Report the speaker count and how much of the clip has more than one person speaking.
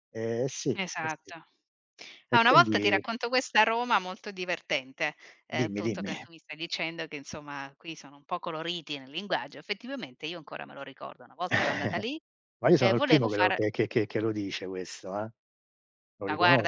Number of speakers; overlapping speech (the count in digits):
2, about 19%